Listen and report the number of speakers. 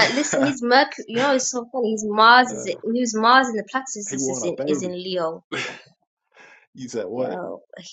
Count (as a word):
two